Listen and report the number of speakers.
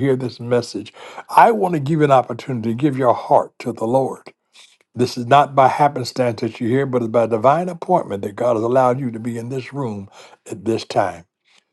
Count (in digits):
1